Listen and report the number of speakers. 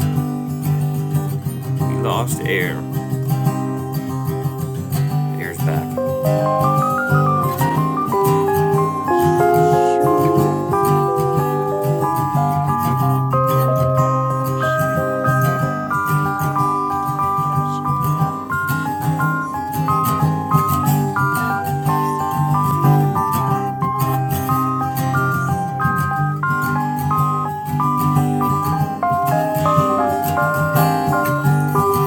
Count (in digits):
2